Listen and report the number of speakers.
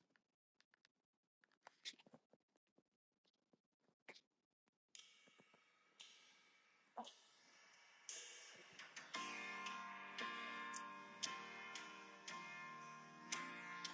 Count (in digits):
0